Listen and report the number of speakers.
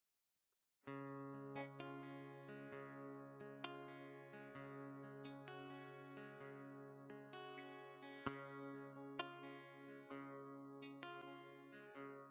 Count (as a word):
zero